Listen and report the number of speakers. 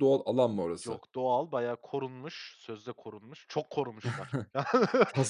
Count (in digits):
2